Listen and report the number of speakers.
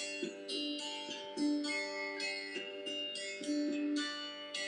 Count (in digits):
0